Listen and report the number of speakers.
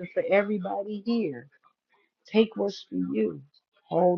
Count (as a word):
one